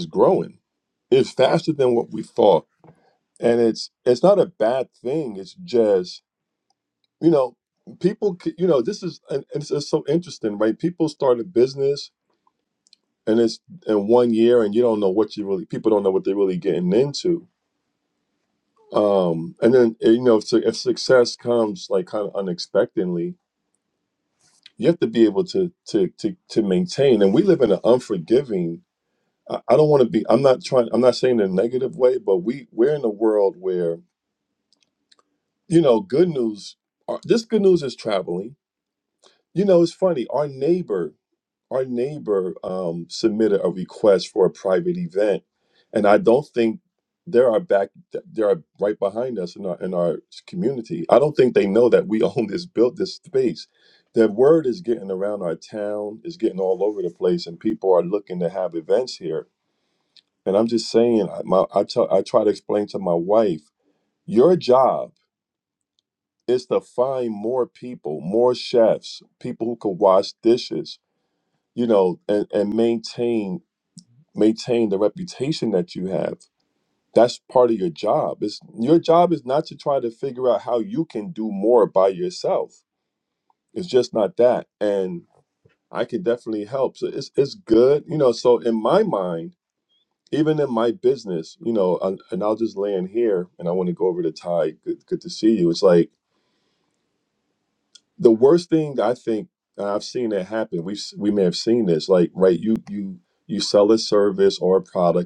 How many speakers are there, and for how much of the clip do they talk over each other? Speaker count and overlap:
1, no overlap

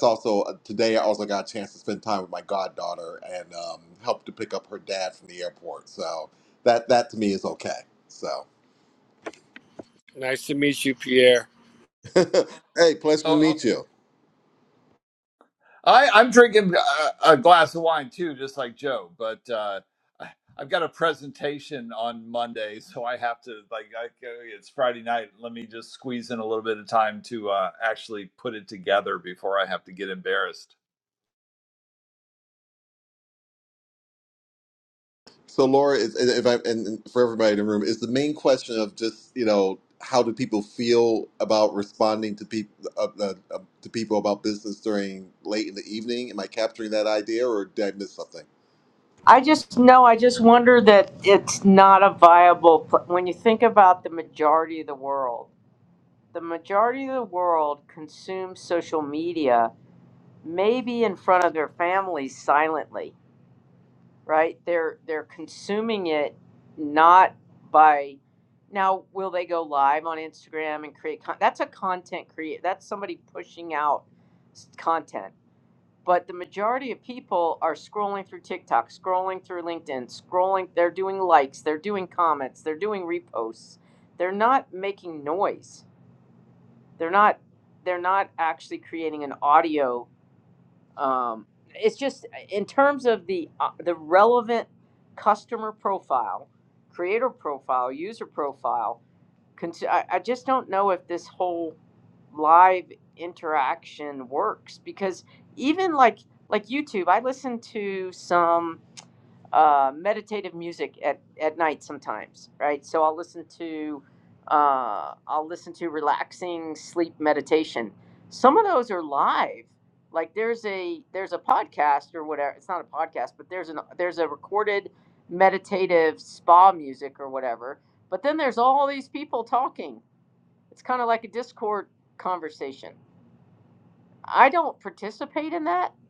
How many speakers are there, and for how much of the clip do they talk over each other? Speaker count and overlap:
4, under 1%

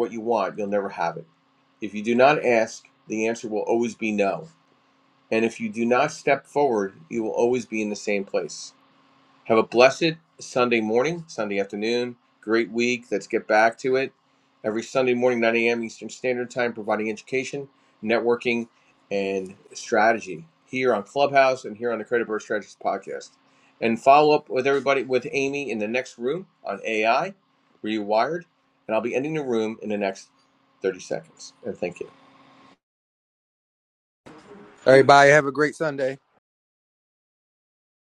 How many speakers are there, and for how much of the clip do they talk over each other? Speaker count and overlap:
2, no overlap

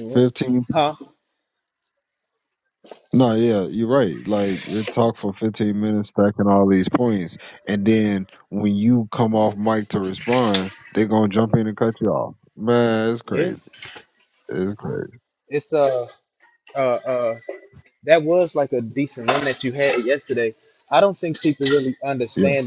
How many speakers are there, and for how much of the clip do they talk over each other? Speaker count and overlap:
2, about 3%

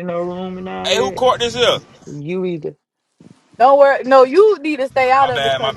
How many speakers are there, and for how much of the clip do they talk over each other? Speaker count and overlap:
3, about 16%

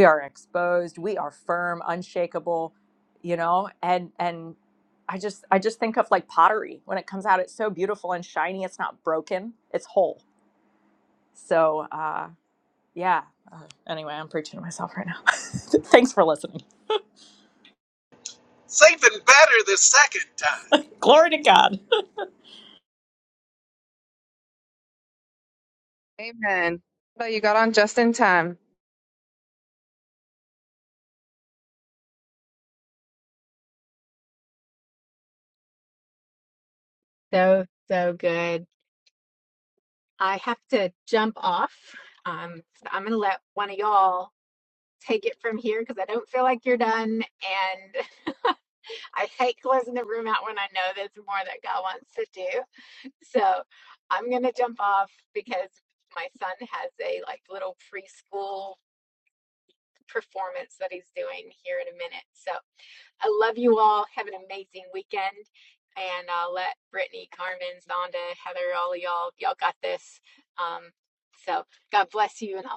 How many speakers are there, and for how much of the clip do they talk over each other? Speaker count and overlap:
4, no overlap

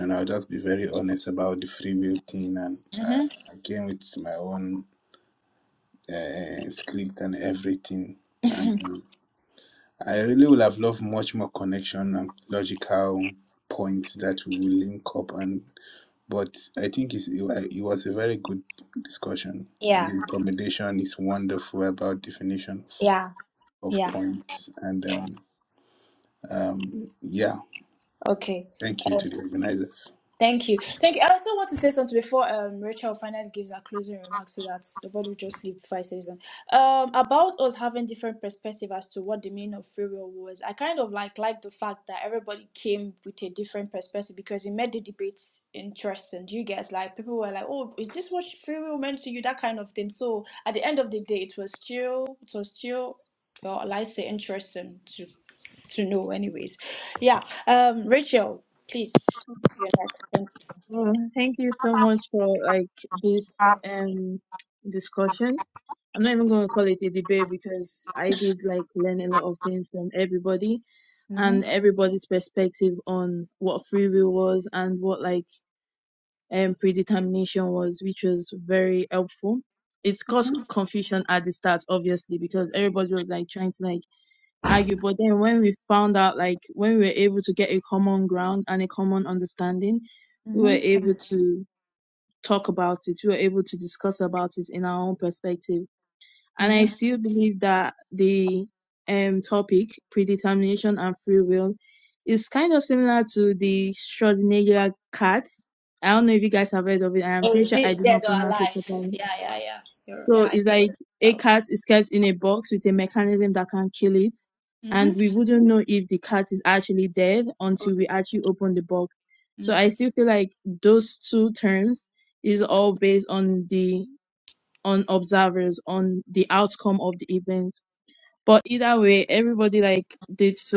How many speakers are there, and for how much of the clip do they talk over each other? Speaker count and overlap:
3, about 4%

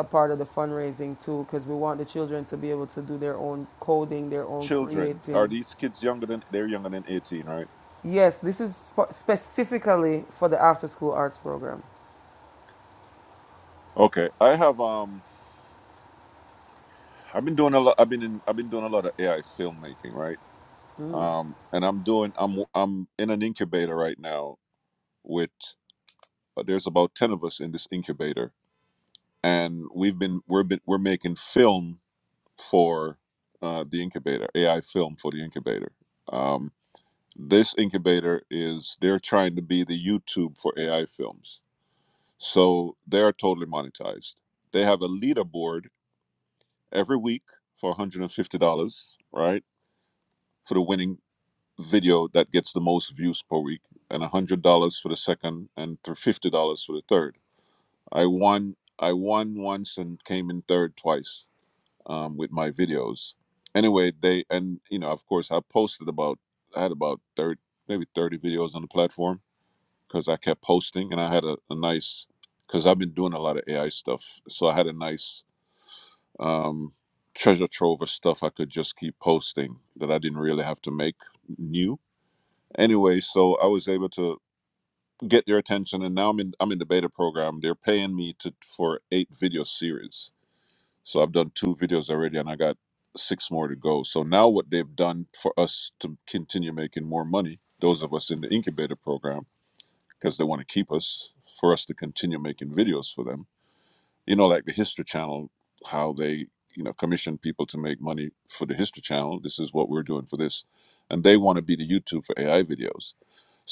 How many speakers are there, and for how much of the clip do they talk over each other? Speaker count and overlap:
2, about 1%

